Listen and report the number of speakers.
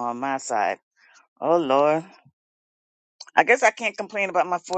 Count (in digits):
1